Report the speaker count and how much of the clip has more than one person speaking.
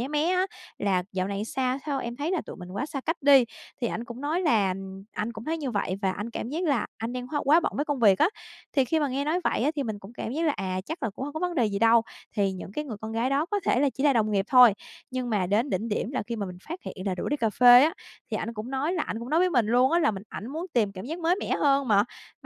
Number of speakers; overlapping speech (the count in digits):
1, no overlap